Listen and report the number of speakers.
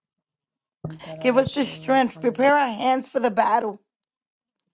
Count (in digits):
1